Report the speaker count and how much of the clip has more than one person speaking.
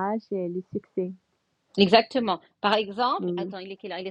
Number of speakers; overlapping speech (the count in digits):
2, about 8%